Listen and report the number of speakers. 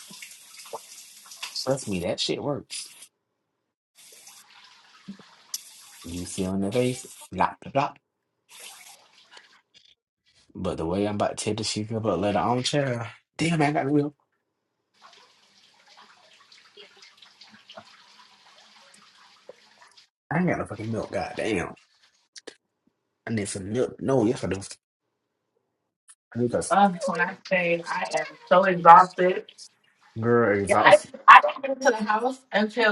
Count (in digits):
2